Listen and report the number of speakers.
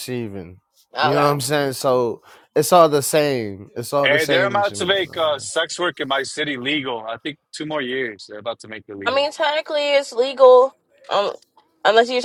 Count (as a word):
three